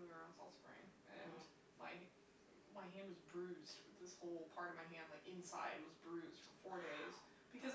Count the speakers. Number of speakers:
one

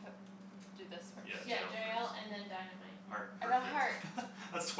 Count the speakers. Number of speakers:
three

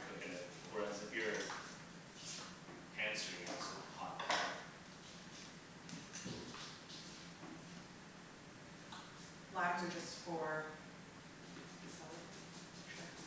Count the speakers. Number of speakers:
two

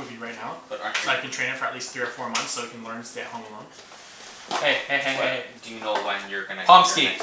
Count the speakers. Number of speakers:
three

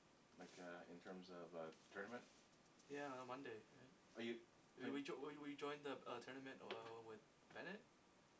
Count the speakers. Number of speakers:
two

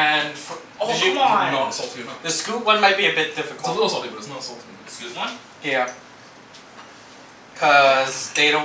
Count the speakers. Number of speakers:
three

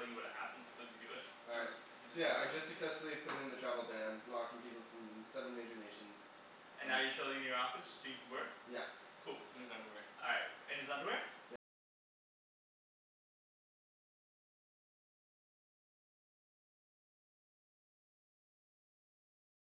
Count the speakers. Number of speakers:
three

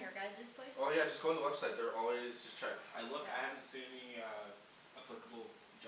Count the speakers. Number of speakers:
three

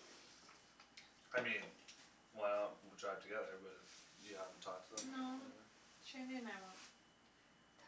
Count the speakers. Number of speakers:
two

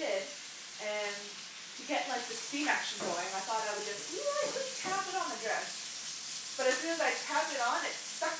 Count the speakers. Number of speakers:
one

